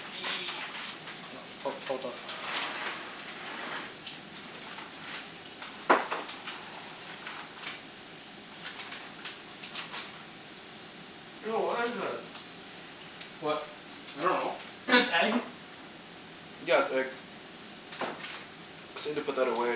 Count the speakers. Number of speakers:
three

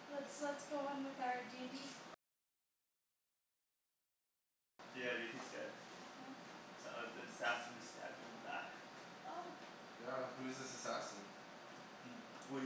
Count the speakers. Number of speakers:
three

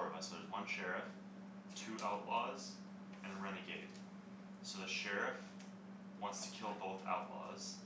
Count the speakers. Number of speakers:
one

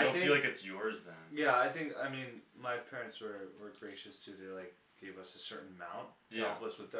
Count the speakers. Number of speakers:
two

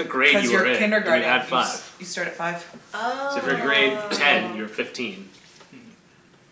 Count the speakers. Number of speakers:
three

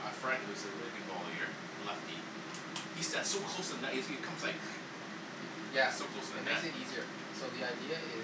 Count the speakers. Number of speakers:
two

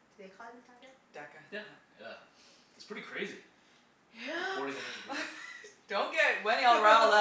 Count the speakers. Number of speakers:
three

